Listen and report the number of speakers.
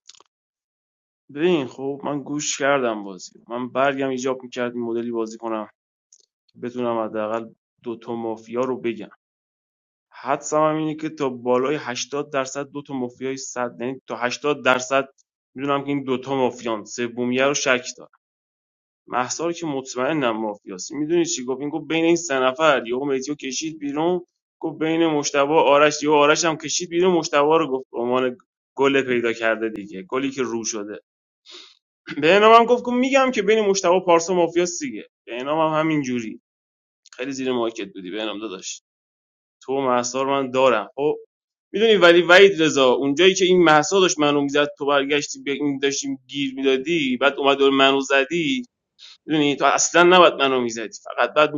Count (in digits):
1